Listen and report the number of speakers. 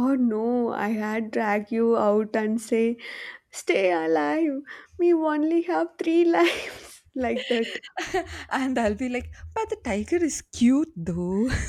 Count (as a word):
two